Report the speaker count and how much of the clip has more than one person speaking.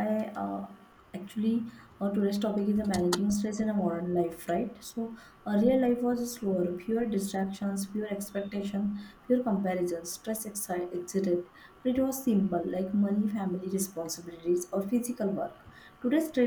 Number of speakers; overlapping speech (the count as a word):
one, no overlap